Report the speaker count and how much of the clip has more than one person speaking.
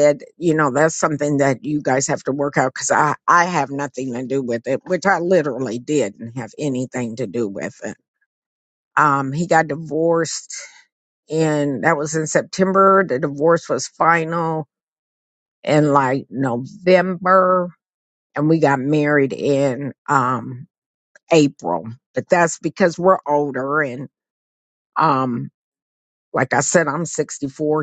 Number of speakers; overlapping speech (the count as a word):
one, no overlap